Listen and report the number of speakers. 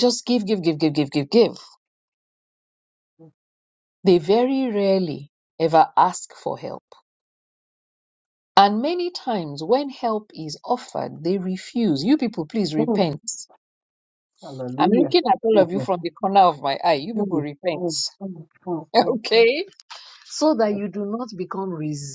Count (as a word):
two